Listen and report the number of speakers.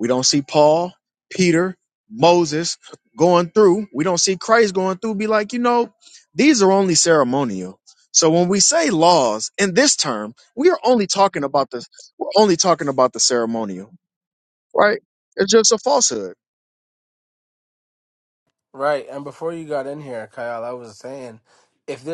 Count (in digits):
2